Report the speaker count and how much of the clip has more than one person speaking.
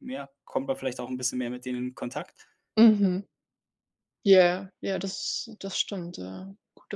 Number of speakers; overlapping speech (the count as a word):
two, no overlap